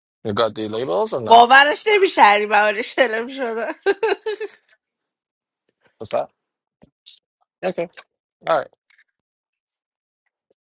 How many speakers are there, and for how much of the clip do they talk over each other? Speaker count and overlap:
two, about 1%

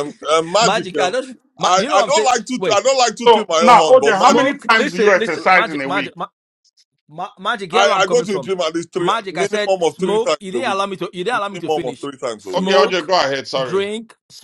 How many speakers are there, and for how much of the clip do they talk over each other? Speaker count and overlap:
three, about 57%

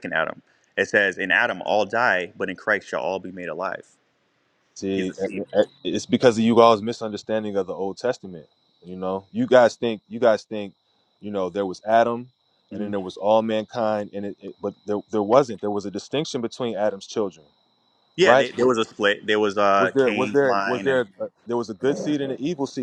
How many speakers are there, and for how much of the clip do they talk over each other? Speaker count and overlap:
two, about 9%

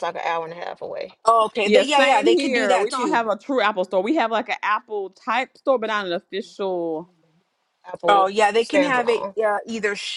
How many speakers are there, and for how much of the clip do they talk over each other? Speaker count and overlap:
three, about 23%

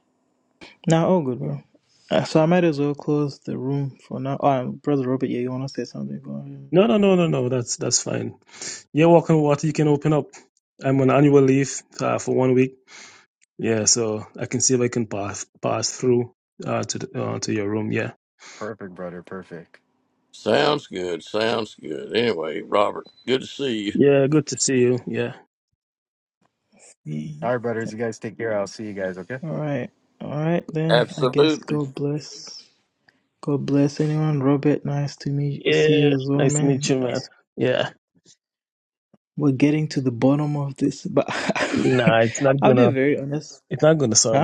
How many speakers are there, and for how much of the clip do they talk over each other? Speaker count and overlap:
four, about 7%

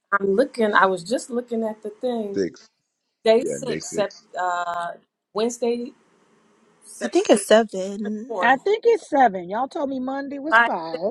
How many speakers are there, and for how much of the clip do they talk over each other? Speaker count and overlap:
three, about 6%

